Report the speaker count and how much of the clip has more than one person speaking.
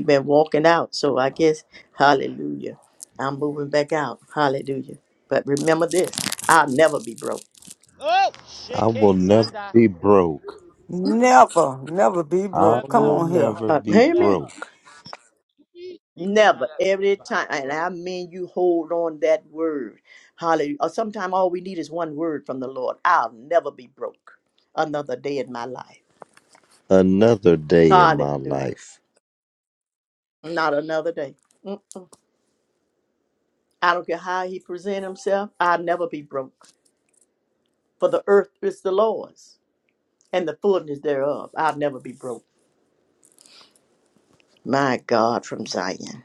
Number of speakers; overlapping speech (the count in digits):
4, about 12%